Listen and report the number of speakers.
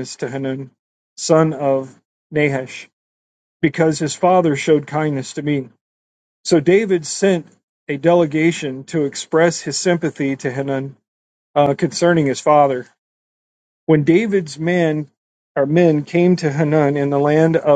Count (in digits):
1